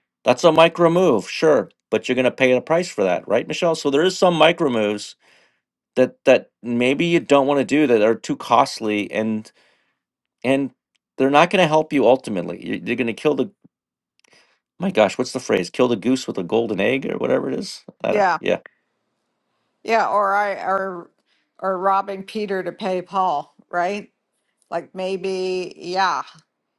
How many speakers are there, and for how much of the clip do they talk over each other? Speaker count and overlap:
2, about 1%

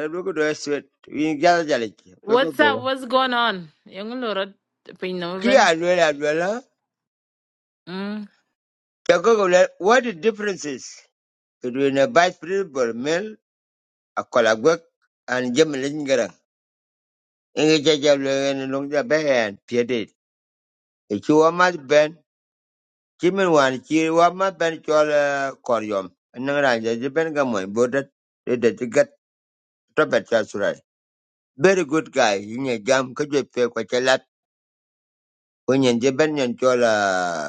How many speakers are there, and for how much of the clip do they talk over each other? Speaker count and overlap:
2, about 2%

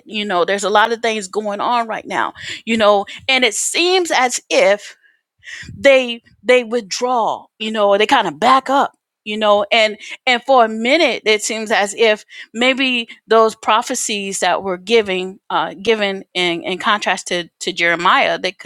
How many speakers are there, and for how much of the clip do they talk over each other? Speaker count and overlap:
1, no overlap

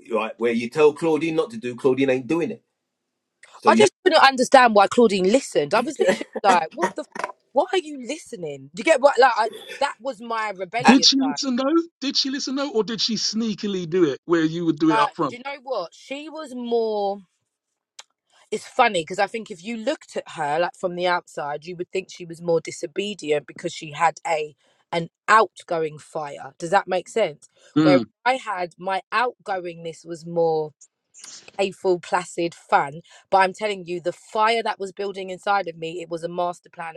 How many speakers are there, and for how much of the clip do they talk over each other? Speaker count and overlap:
3, about 4%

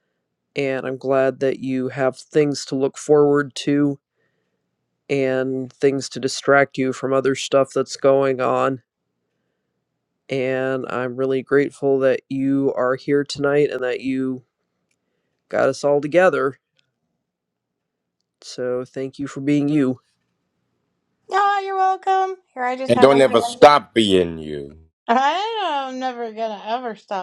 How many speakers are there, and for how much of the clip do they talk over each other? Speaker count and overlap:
3, about 2%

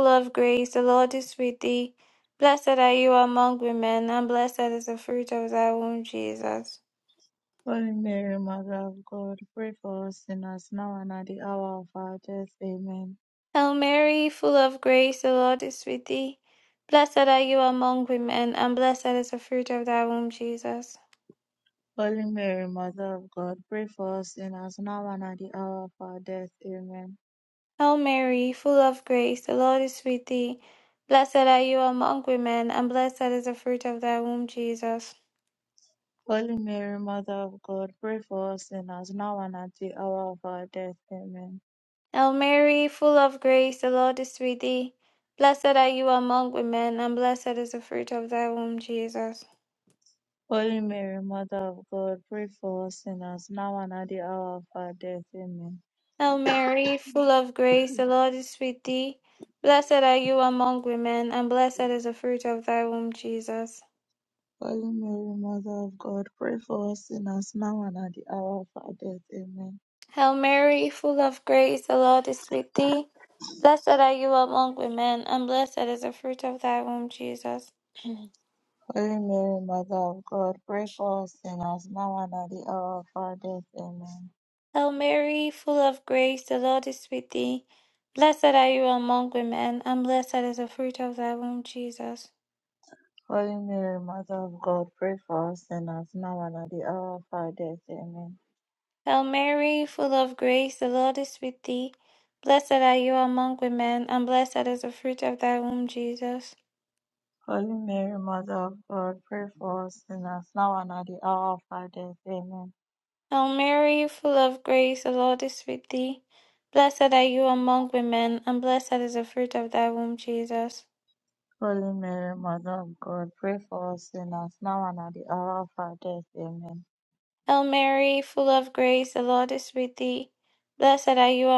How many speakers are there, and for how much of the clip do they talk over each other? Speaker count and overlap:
2, no overlap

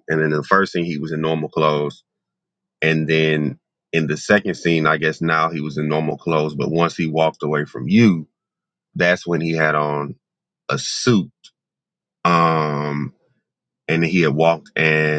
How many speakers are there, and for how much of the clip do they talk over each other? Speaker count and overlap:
1, no overlap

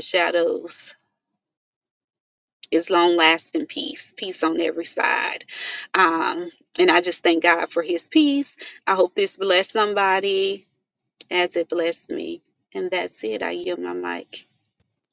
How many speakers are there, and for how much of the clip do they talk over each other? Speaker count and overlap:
1, no overlap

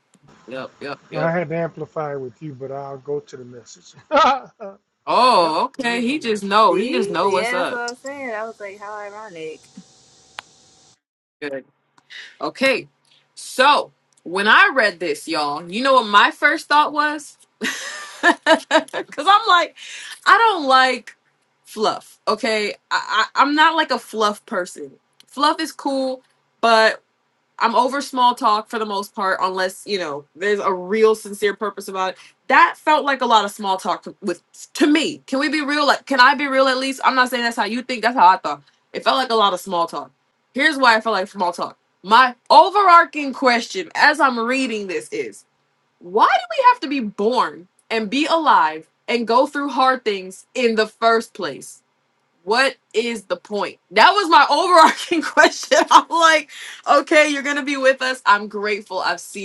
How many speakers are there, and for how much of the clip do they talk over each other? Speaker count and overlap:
3, about 4%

